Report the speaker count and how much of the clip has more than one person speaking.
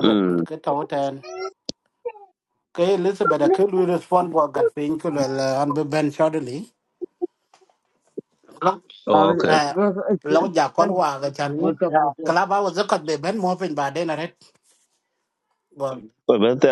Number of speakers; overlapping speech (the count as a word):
three, about 8%